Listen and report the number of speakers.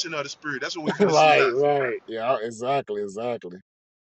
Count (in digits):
2